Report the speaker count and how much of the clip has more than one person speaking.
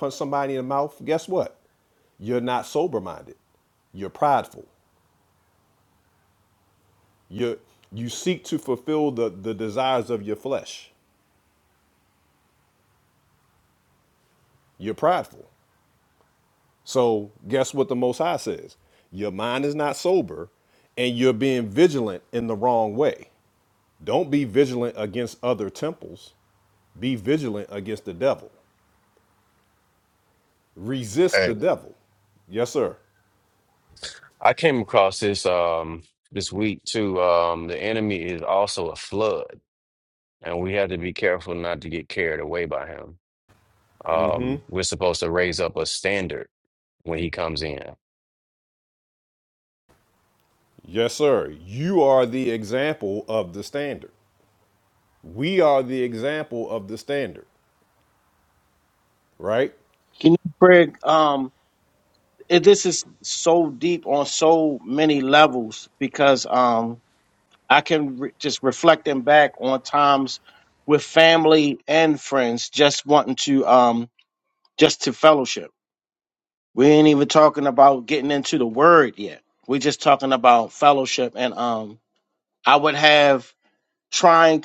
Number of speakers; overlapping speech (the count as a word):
three, about 1%